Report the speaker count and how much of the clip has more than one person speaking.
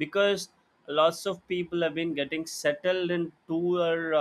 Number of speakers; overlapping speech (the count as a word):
one, no overlap